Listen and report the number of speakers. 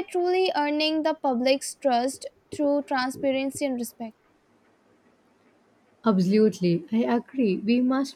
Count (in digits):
2